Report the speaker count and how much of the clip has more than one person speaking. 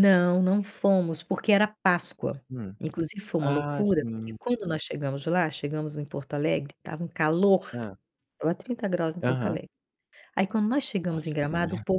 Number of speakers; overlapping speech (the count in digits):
2, about 17%